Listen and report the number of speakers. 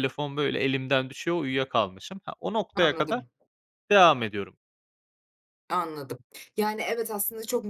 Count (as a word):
two